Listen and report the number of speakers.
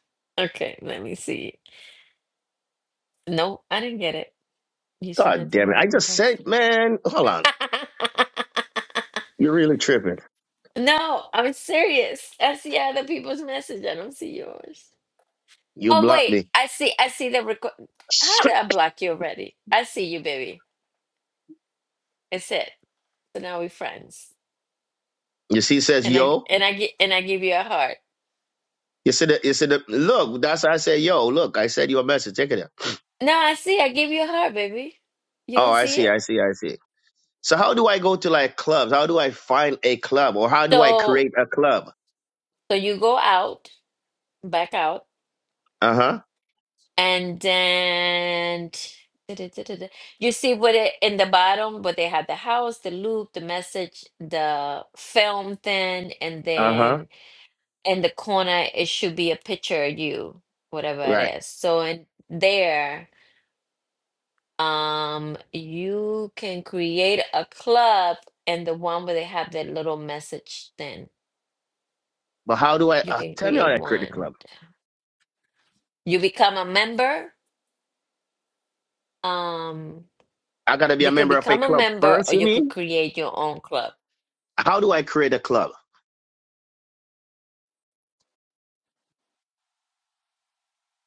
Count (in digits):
2